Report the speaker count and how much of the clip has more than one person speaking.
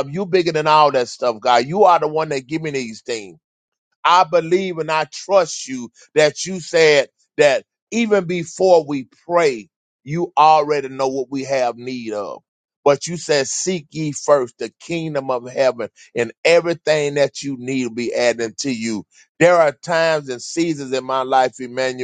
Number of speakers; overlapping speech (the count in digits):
1, no overlap